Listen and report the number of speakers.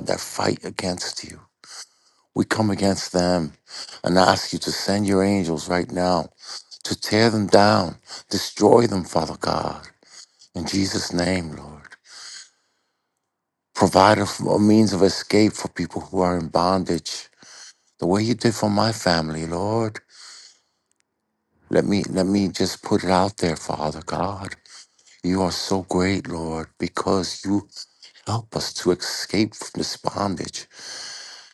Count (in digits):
1